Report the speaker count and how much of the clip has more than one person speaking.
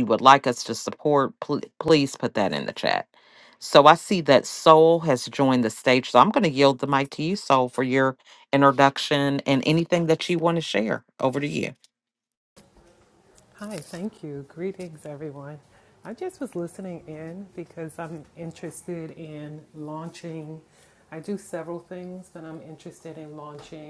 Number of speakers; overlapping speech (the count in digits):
2, no overlap